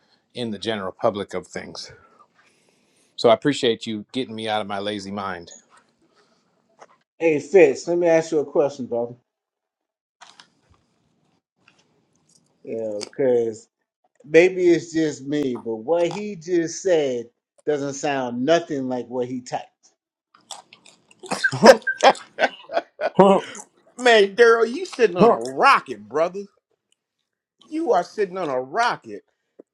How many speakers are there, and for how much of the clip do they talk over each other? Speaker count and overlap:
3, no overlap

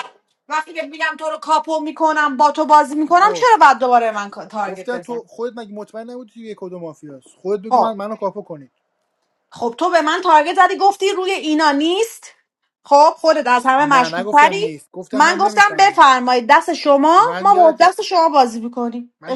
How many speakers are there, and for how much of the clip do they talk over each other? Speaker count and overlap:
2, about 18%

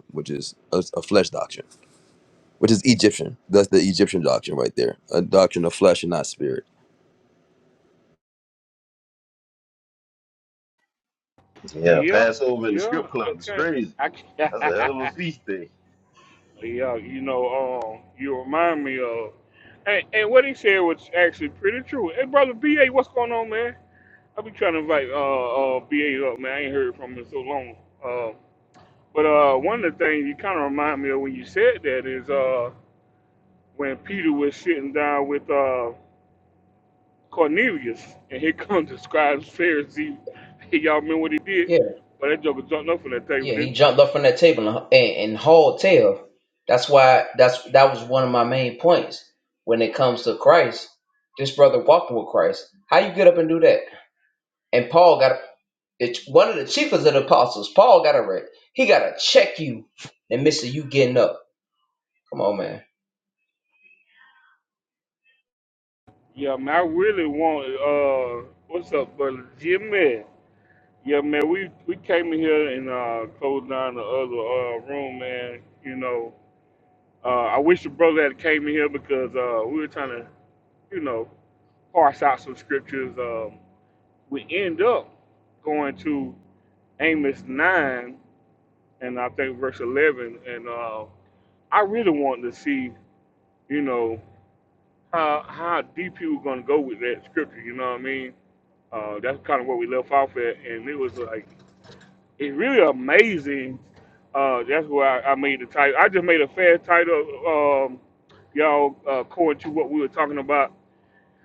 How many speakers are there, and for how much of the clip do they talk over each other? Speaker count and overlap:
4, about 2%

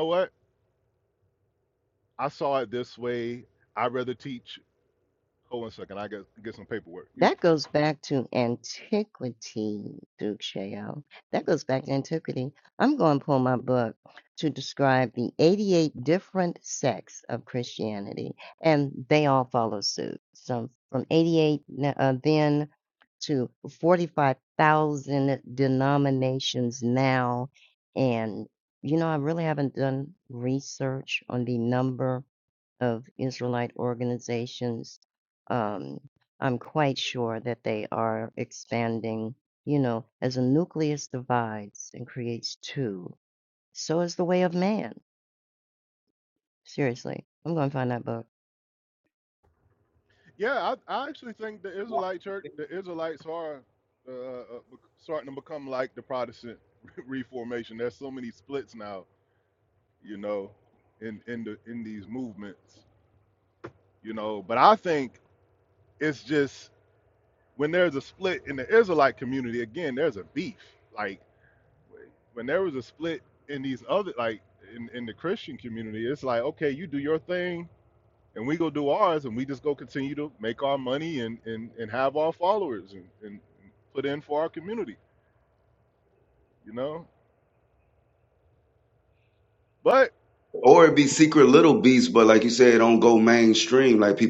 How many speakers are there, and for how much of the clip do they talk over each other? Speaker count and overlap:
3, under 1%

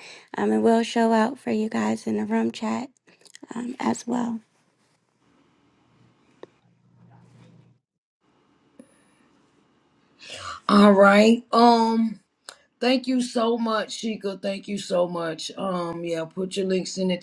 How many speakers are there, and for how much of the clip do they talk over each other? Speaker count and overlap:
2, no overlap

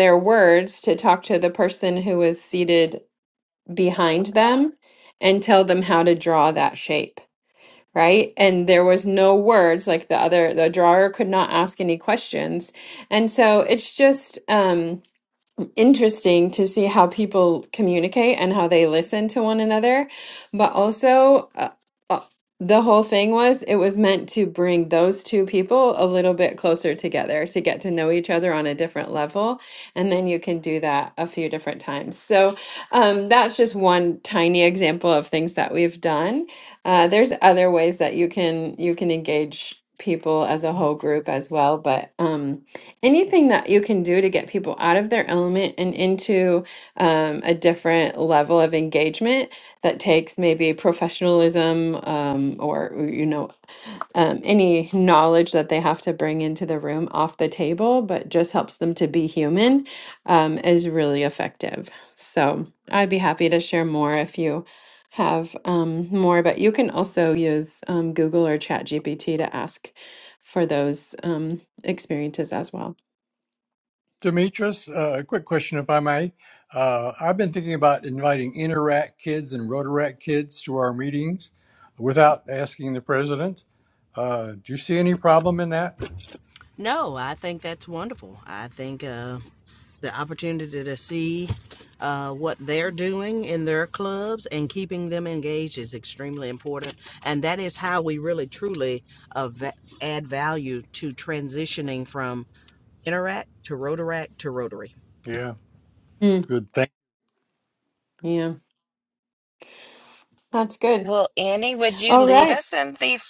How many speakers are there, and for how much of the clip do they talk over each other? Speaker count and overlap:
4, under 1%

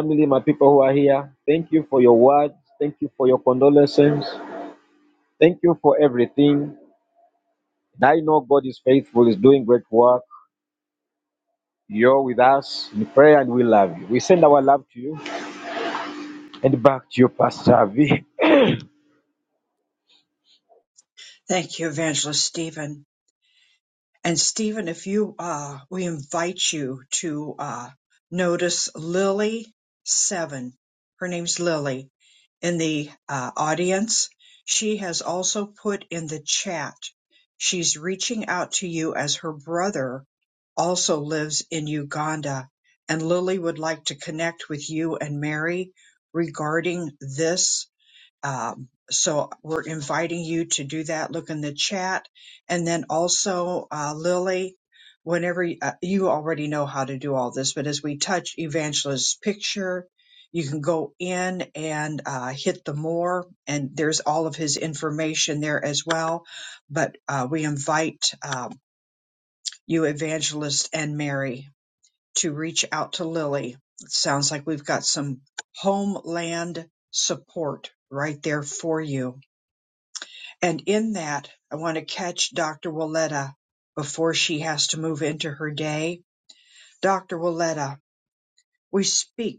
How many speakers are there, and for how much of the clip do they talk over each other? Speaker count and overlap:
2, no overlap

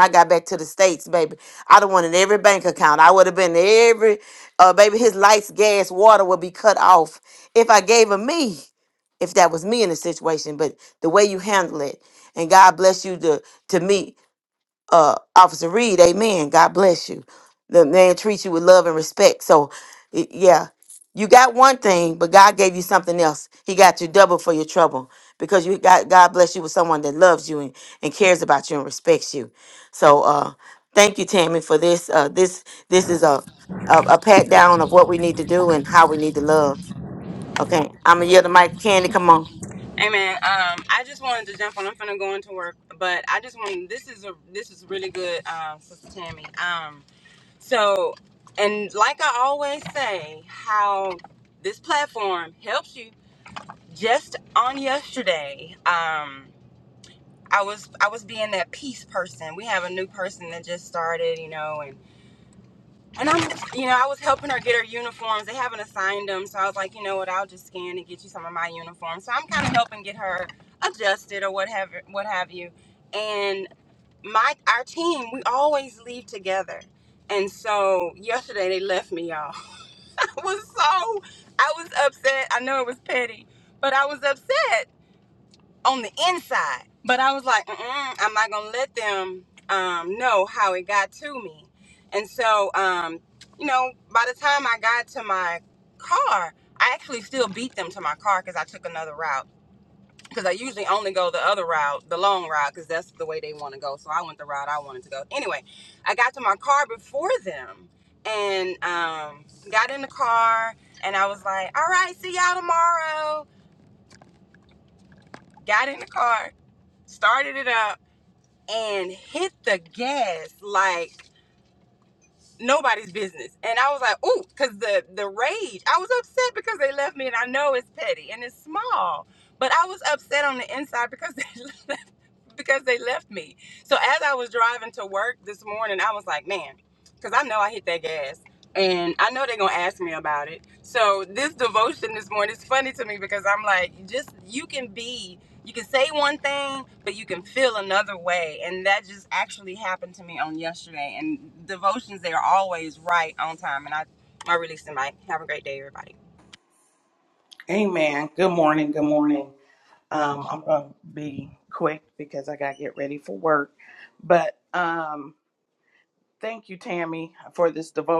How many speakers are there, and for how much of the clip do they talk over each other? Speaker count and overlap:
3, no overlap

